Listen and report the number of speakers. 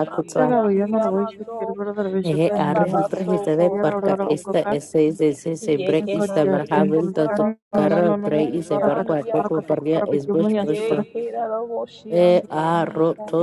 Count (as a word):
three